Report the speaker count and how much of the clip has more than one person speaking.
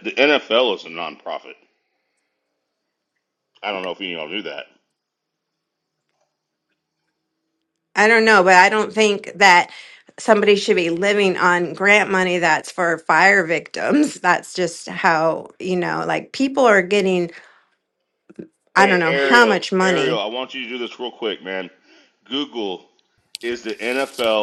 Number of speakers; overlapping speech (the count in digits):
2, about 6%